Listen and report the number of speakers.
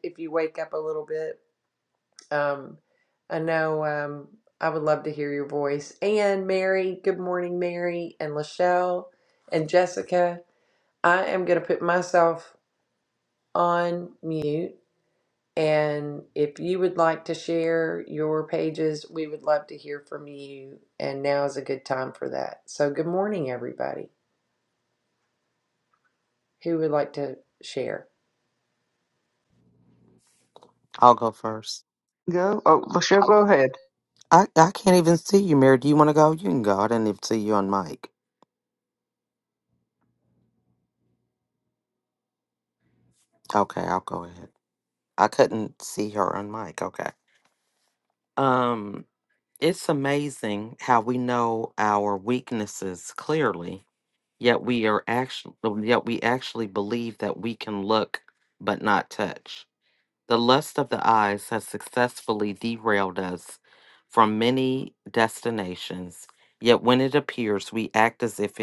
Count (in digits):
3